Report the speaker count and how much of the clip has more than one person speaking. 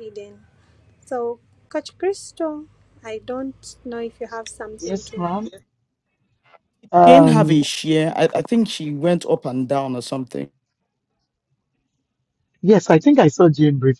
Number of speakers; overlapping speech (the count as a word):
three, about 7%